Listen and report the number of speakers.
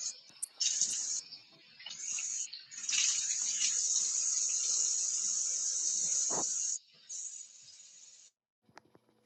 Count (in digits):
0